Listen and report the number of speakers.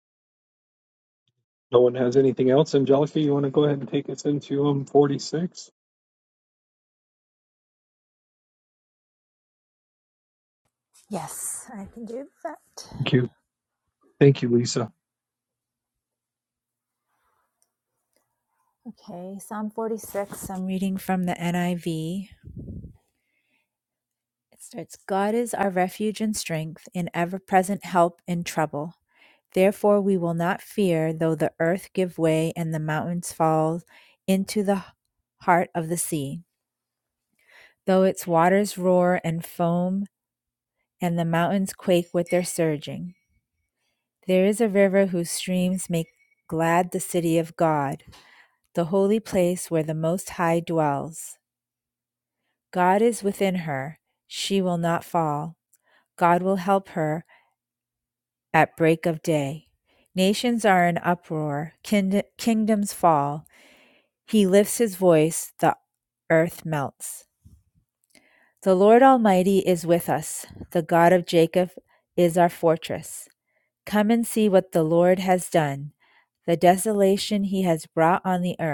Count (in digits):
2